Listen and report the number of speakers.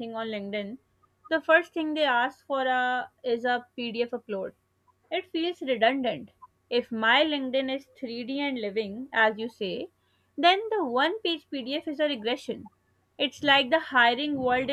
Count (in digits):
1